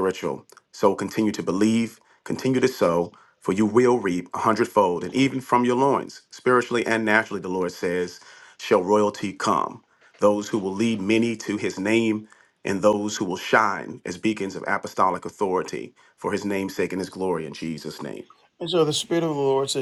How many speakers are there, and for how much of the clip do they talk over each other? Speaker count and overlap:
2, no overlap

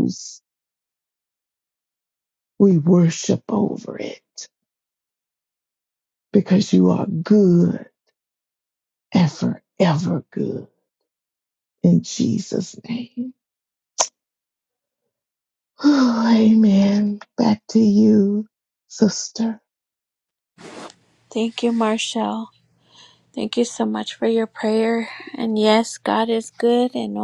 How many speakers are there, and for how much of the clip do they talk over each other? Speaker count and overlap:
2, no overlap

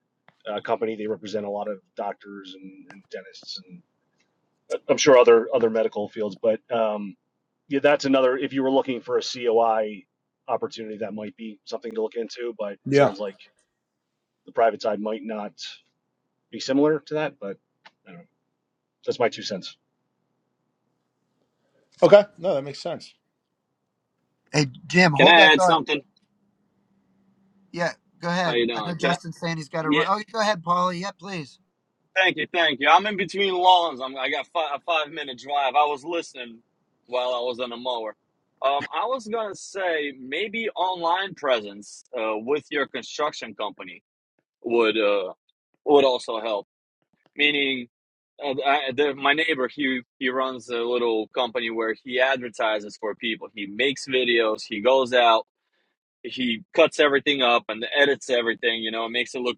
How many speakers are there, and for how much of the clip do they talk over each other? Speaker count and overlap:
4, about 3%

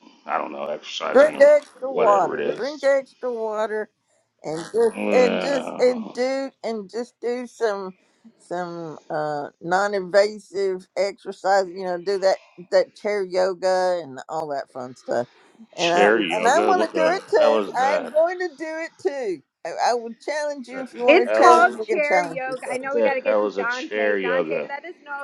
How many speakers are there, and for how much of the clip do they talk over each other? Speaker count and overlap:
3, about 34%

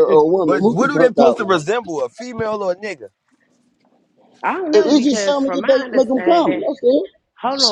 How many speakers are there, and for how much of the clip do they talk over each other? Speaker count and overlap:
3, about 41%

